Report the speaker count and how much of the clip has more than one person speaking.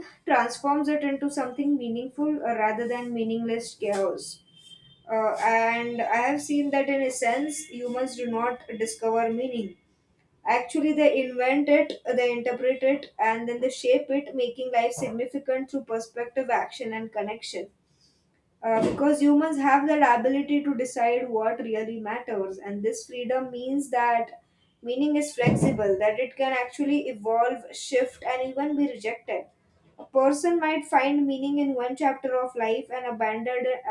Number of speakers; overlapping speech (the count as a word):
one, no overlap